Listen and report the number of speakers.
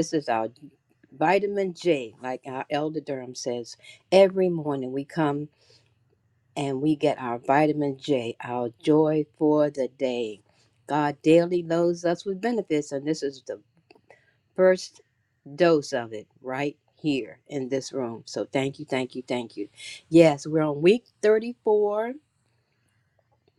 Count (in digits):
1